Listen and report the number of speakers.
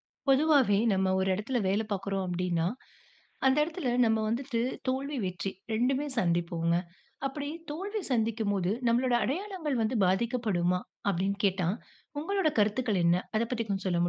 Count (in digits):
1